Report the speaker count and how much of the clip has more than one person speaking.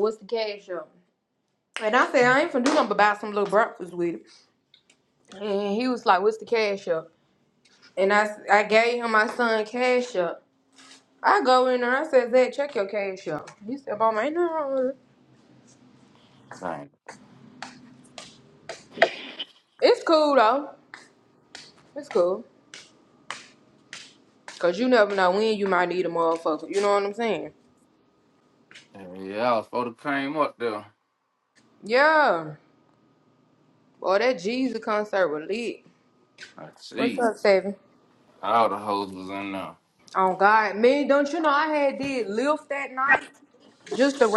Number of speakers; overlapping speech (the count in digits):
2, about 1%